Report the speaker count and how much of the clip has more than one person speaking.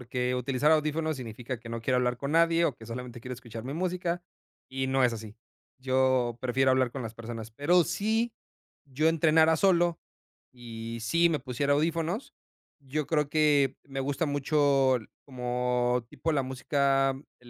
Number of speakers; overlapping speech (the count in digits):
1, no overlap